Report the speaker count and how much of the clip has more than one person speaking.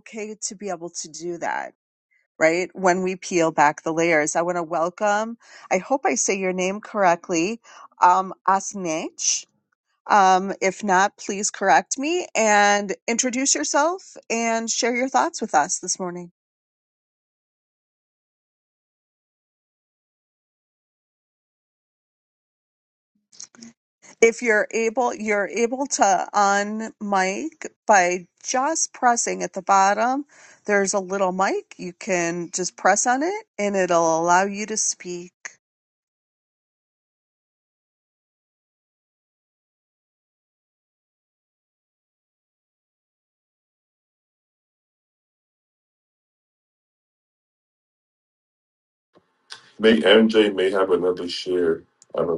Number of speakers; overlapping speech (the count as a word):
two, no overlap